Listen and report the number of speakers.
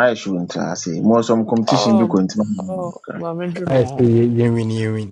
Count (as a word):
three